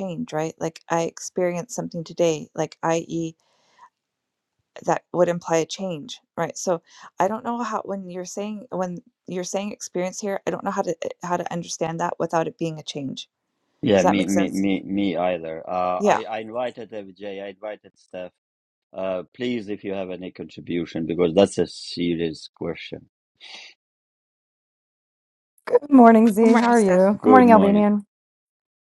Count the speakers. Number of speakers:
three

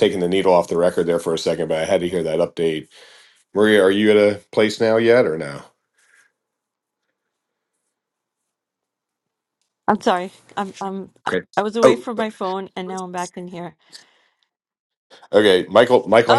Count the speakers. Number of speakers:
two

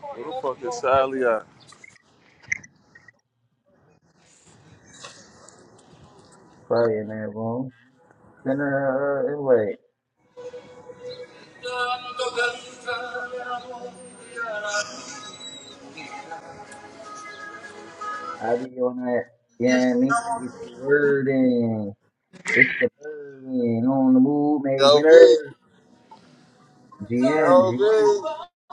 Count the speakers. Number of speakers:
two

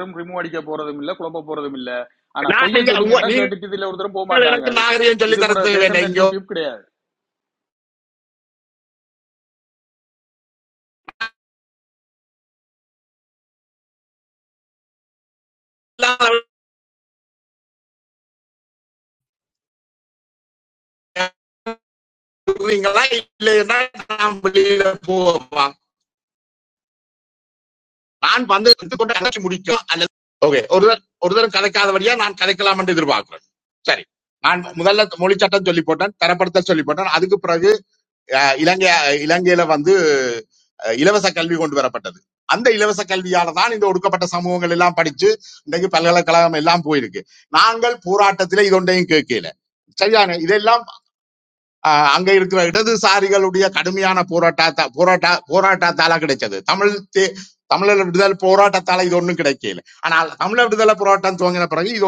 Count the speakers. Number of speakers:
two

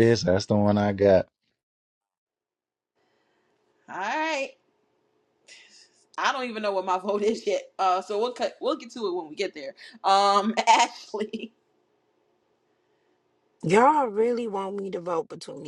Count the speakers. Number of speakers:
three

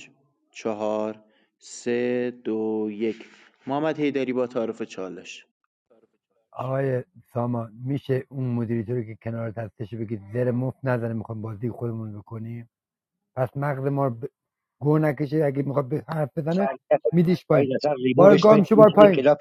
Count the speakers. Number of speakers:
three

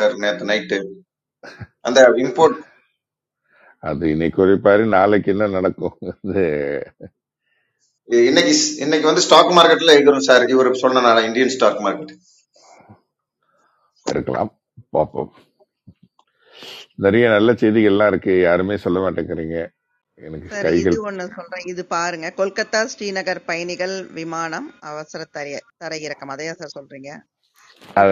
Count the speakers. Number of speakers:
three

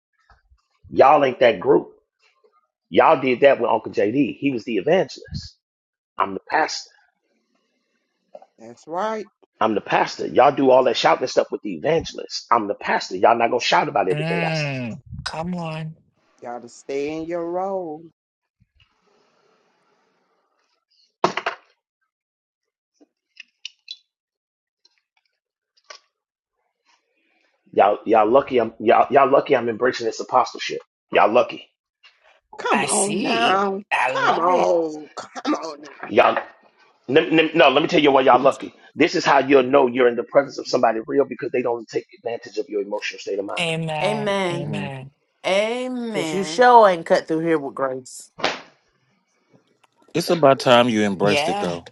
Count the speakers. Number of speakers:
six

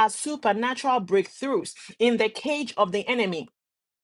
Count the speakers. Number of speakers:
one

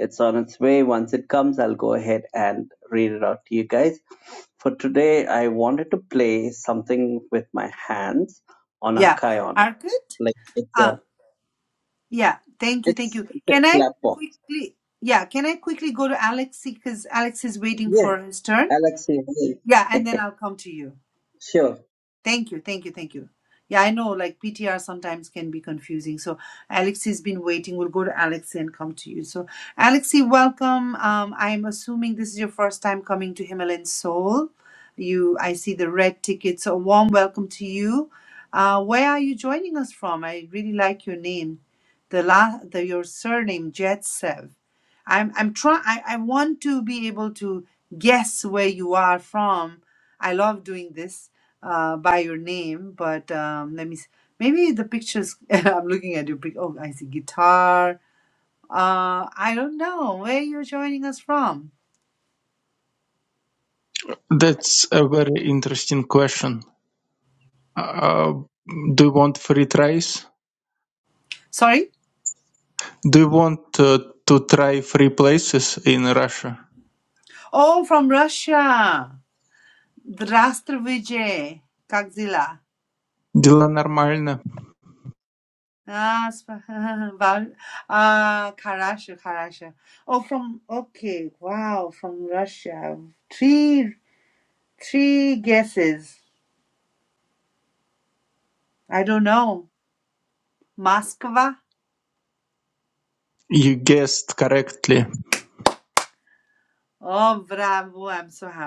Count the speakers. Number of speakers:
three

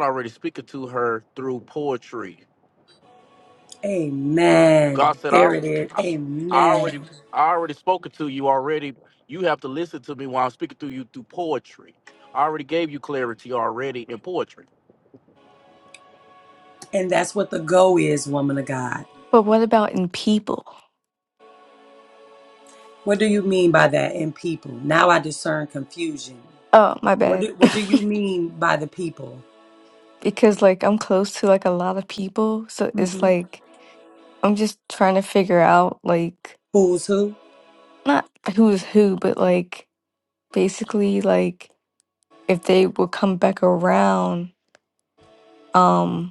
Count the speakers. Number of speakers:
three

